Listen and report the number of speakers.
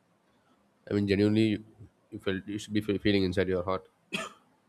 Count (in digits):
1